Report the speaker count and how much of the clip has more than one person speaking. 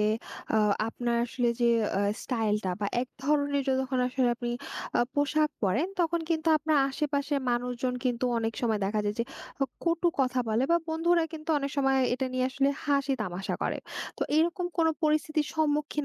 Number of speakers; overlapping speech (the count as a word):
one, no overlap